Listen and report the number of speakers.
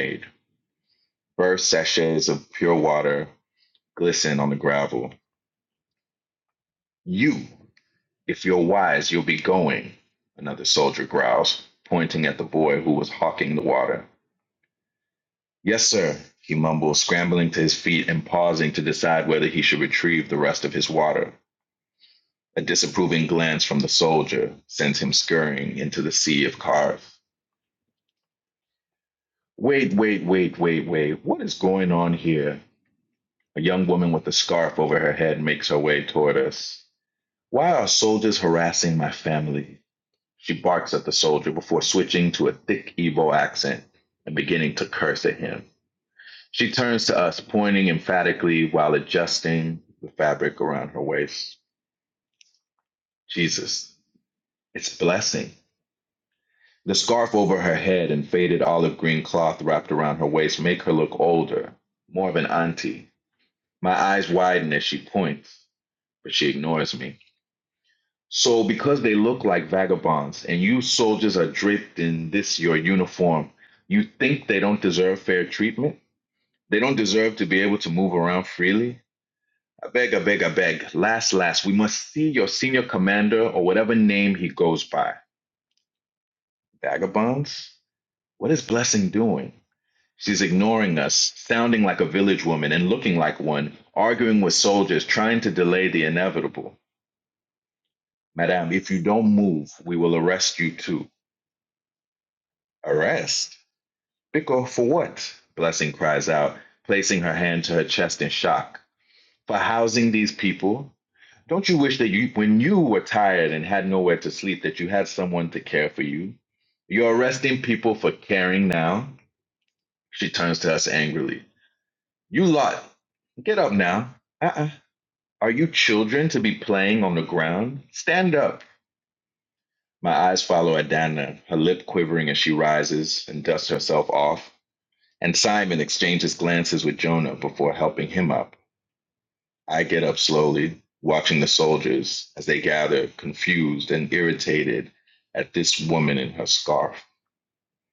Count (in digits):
1